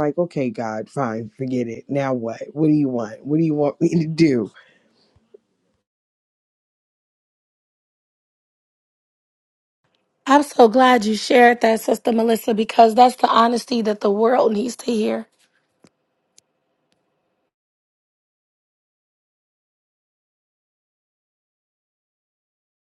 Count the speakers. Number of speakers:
2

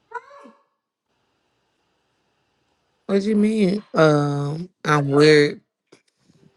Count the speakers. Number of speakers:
1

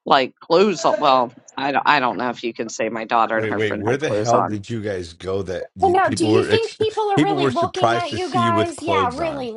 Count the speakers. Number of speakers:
3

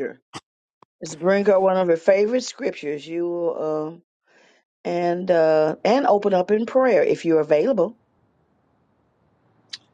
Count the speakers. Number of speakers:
1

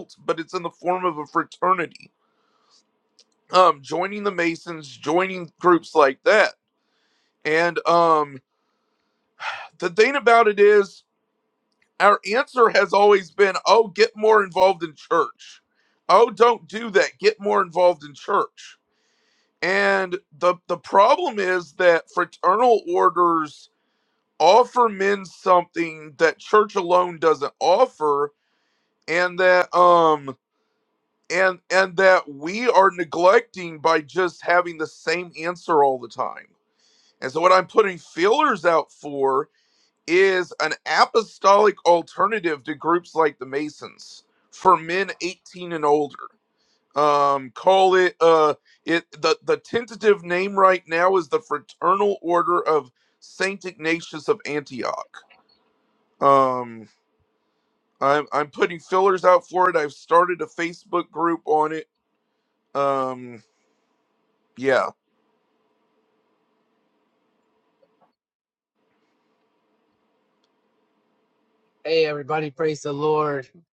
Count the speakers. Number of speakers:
2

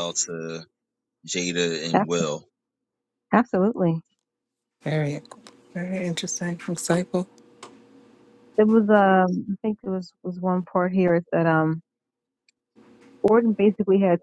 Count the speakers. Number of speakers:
3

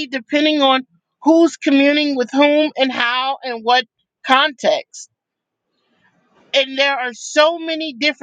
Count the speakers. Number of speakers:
1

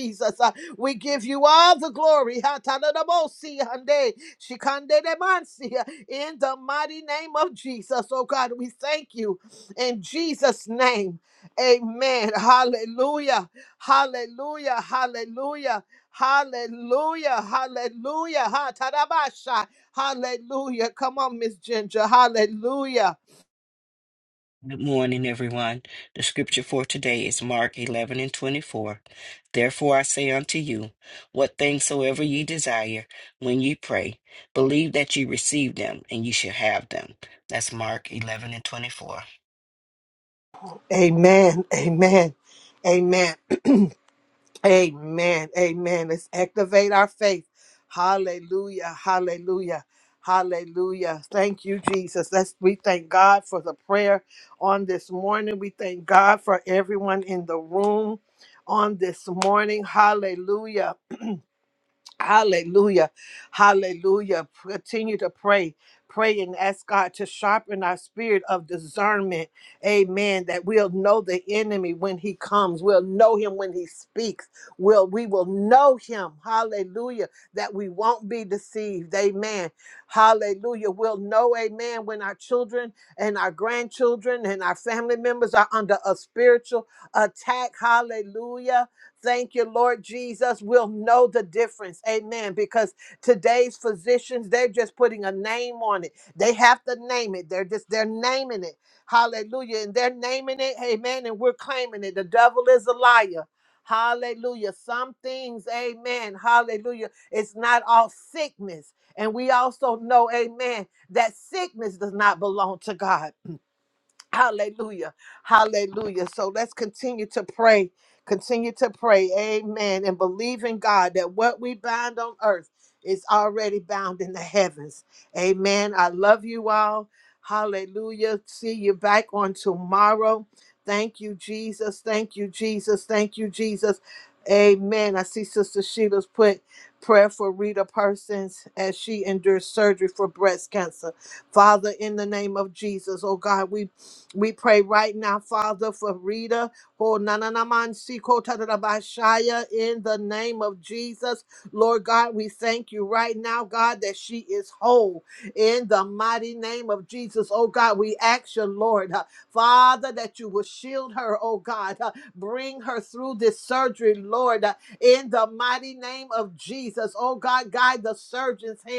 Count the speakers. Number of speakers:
2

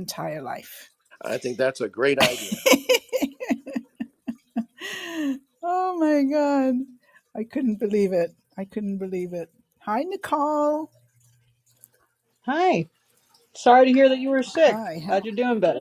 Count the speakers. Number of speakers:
3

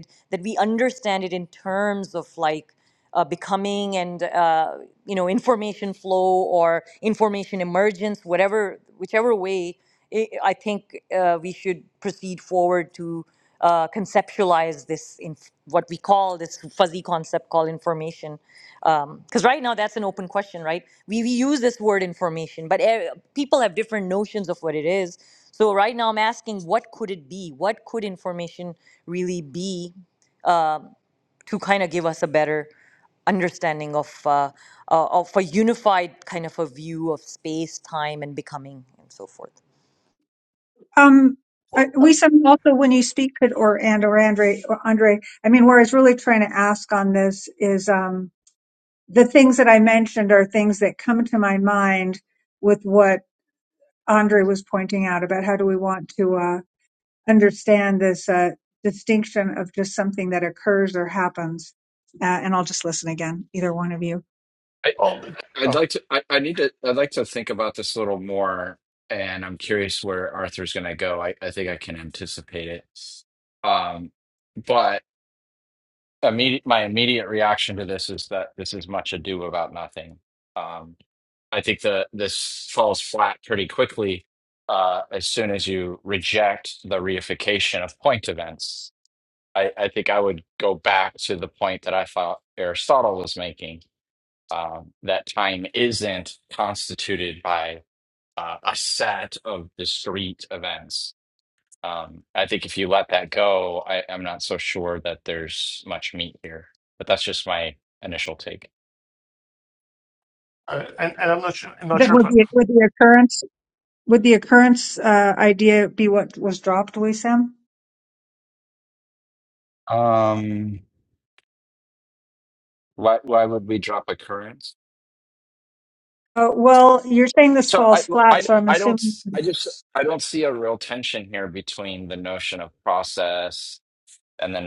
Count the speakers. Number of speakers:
4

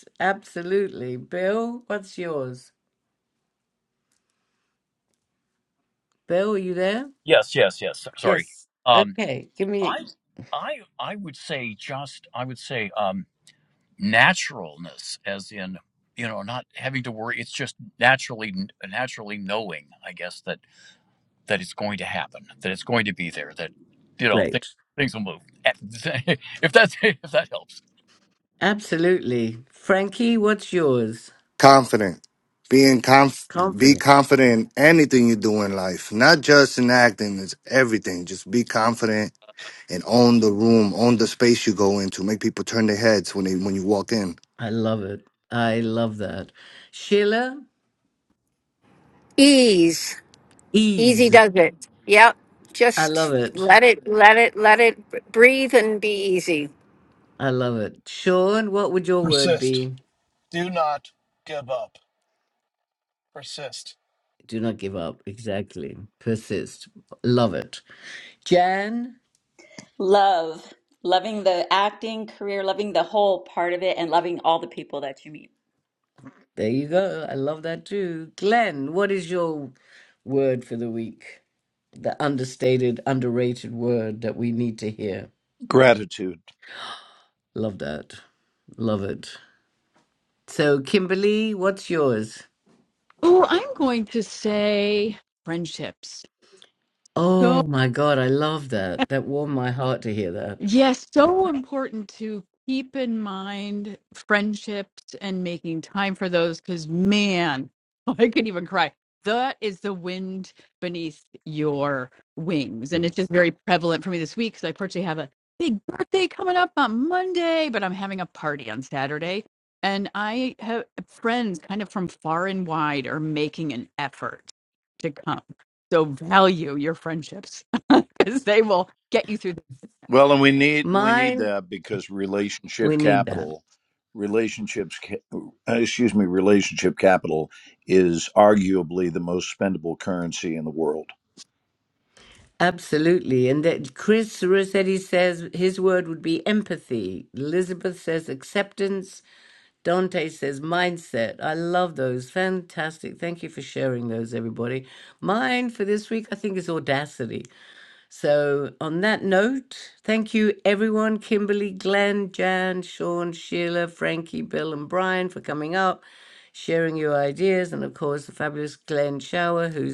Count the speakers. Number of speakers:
8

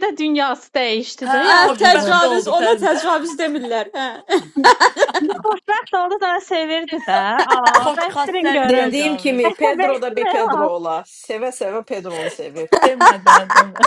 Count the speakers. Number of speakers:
4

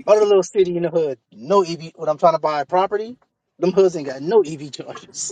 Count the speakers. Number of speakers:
1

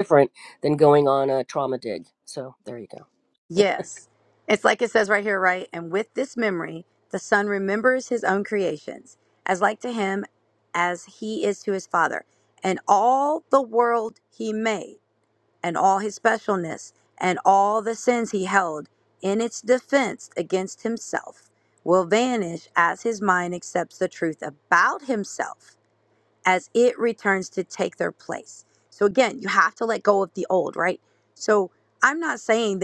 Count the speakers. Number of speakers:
2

